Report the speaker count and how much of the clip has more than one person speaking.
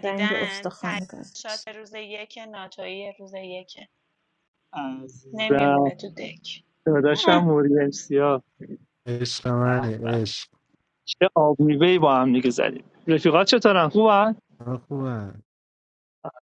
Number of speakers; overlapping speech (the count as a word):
four, about 10%